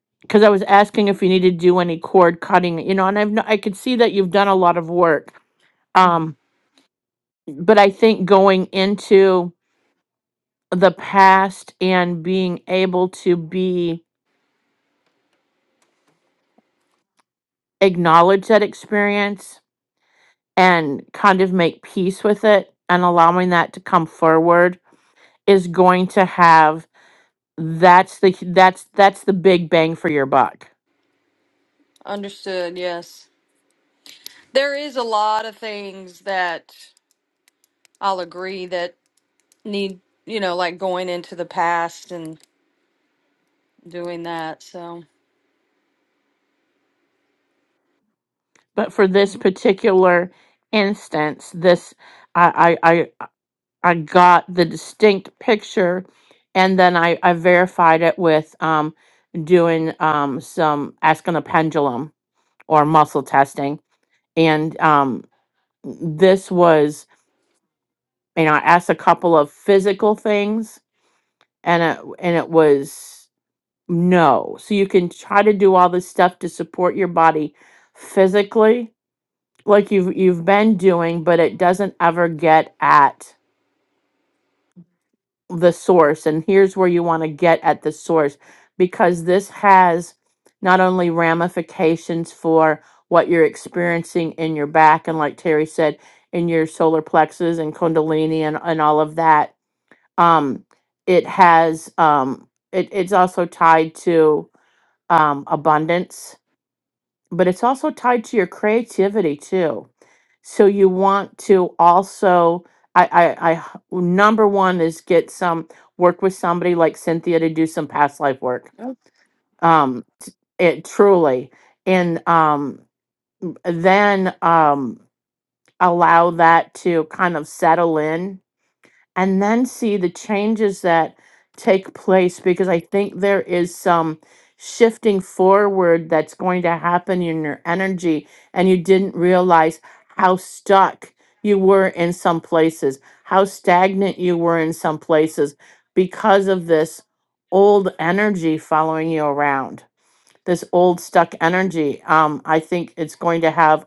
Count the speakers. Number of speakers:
two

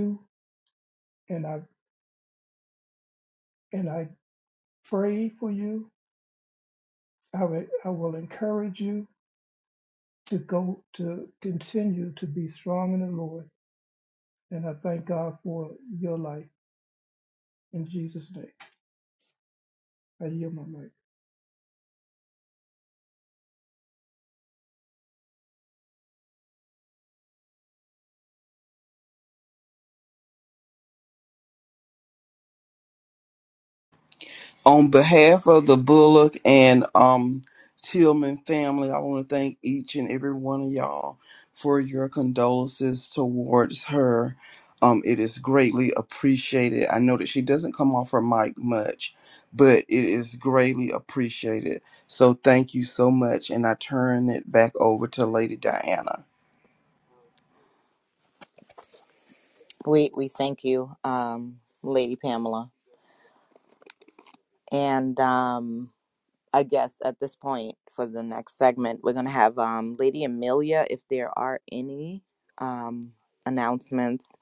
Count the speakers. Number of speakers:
three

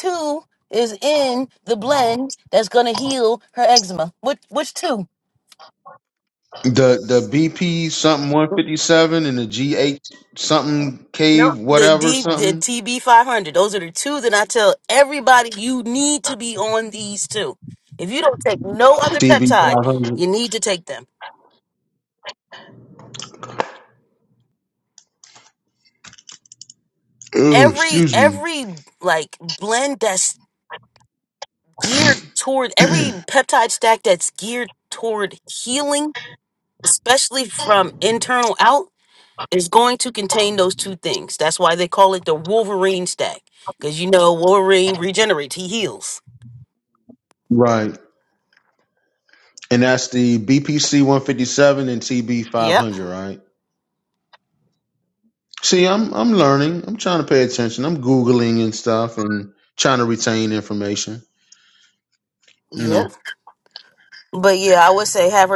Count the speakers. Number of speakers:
two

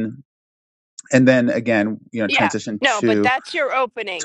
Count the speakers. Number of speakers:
two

